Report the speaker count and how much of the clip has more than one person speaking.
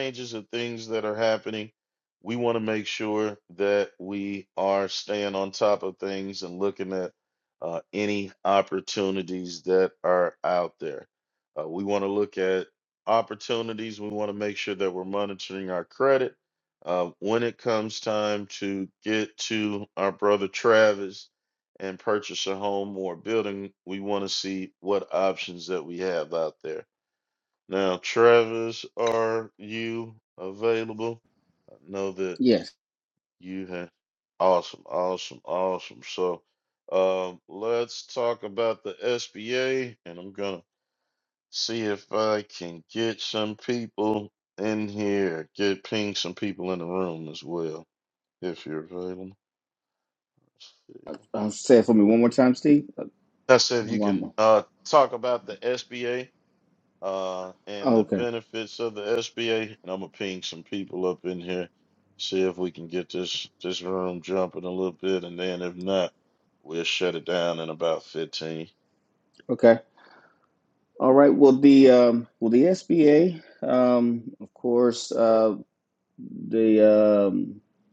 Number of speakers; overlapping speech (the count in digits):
2, about 1%